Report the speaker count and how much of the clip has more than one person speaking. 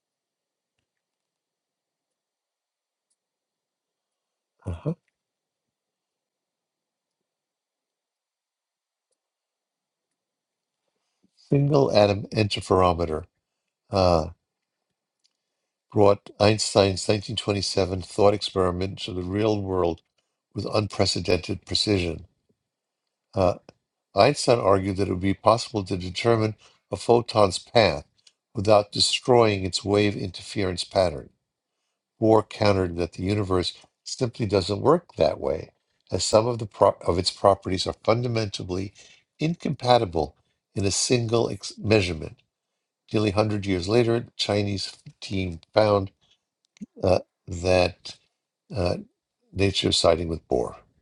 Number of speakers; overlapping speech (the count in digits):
1, no overlap